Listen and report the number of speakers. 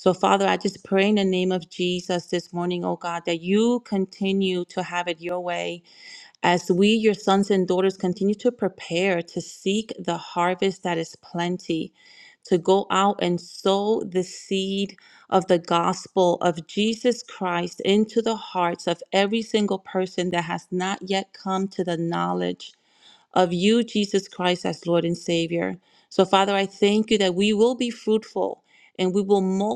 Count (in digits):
1